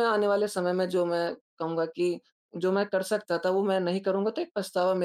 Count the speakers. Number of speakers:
1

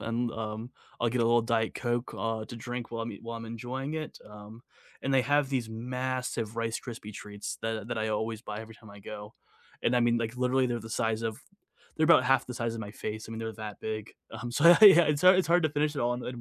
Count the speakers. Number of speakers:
1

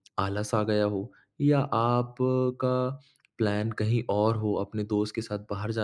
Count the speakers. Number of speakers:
1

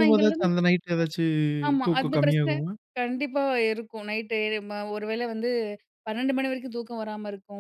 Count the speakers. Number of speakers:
2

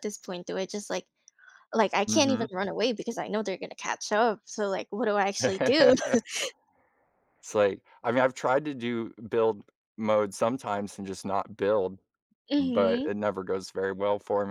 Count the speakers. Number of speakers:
2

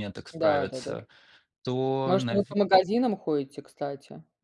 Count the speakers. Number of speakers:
2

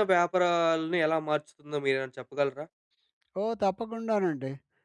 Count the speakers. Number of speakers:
2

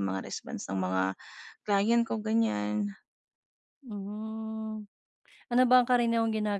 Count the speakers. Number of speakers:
2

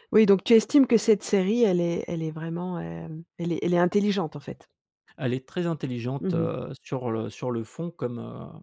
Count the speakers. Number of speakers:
2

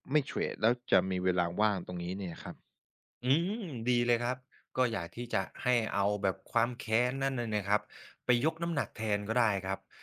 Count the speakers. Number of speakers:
2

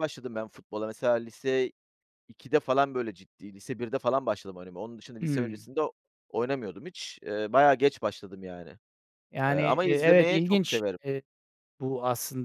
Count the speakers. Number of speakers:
2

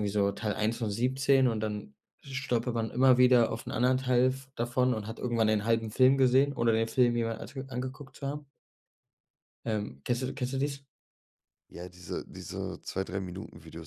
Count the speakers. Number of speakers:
2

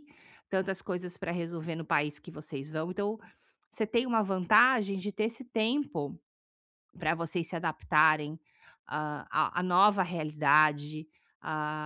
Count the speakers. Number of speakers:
1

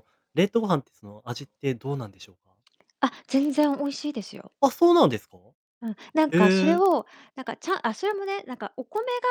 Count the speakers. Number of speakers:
2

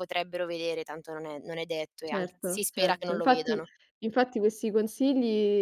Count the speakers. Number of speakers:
2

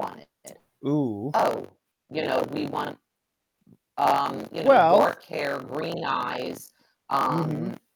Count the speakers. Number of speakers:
2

